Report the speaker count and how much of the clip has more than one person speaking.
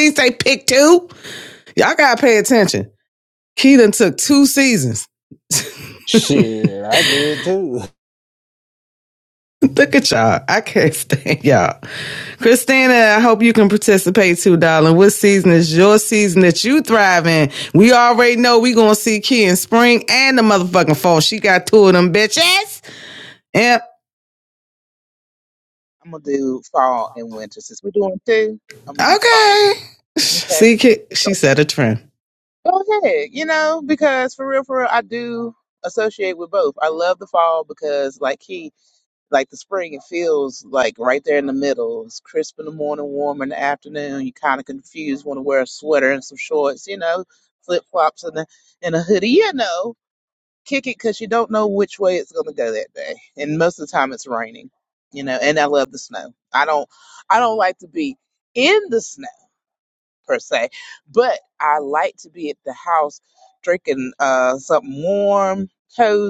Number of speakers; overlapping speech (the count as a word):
three, about 1%